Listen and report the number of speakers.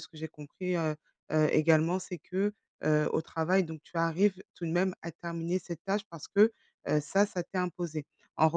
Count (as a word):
one